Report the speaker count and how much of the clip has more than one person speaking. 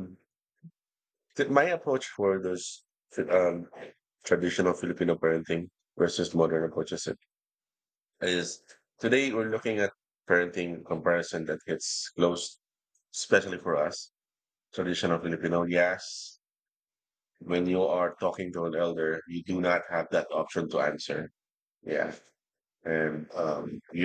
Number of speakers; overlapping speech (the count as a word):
one, no overlap